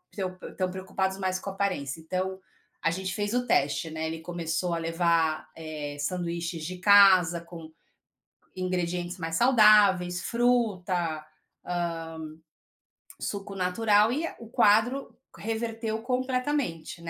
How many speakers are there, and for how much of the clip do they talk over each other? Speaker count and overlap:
1, no overlap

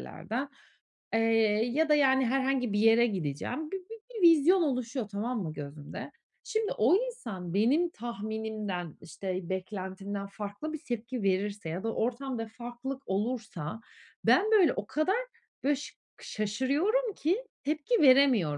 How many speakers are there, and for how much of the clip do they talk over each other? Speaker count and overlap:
1, no overlap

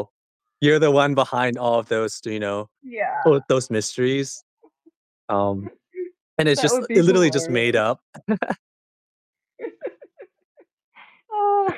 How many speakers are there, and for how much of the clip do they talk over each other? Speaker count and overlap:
2, about 10%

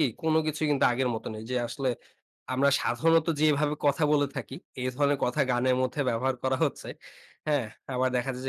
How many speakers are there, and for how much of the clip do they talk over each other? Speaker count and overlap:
1, no overlap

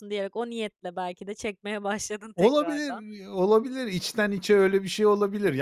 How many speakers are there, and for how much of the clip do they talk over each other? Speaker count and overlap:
2, about 11%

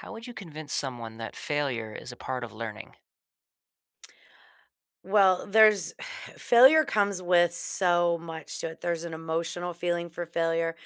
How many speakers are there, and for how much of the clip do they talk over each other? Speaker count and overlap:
2, no overlap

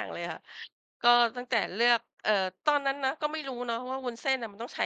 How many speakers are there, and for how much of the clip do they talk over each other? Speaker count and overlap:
1, no overlap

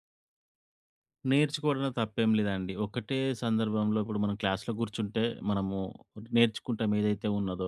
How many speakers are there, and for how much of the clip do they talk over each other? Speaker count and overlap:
1, no overlap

